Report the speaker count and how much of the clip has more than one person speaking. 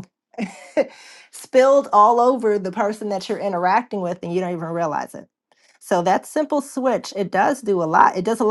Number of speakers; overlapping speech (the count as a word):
one, no overlap